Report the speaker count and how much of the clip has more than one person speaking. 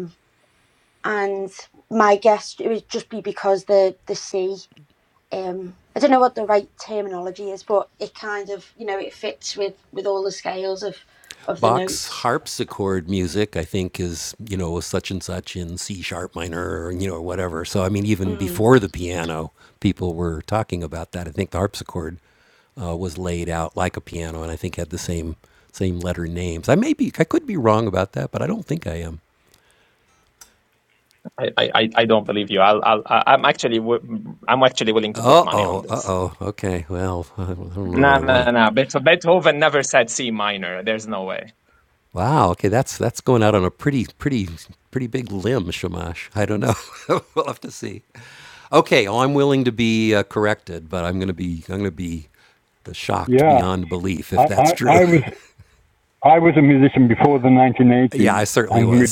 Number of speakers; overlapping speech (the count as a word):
four, about 7%